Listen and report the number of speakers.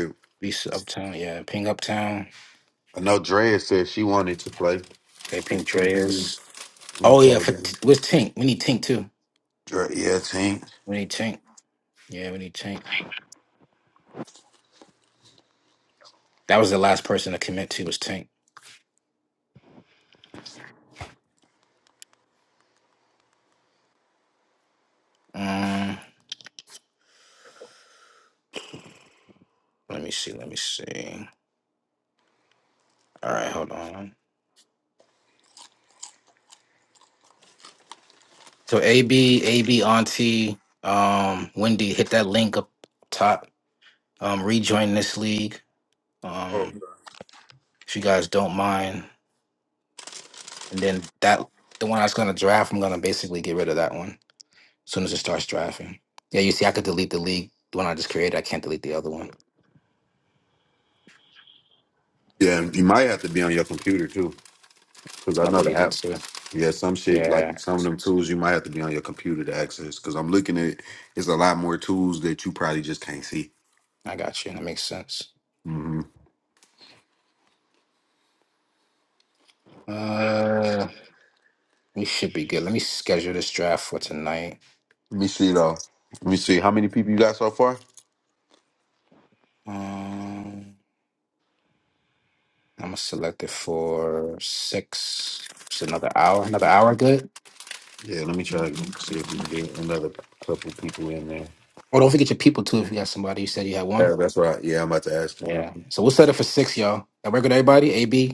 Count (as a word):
two